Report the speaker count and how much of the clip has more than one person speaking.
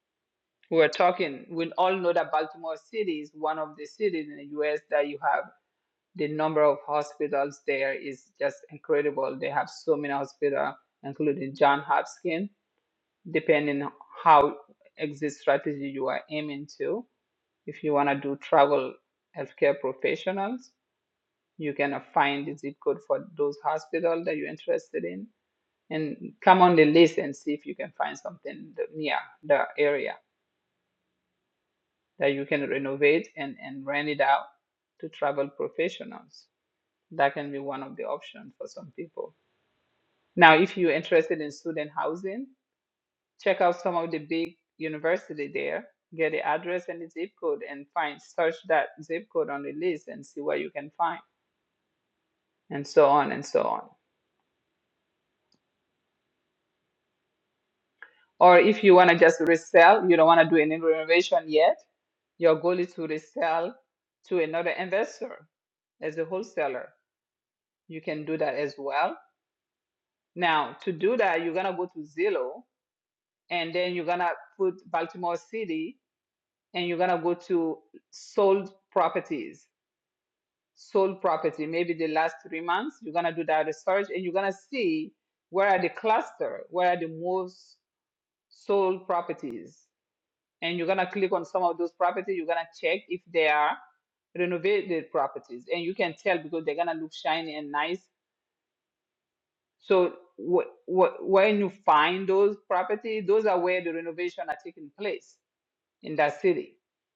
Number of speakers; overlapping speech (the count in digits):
1, no overlap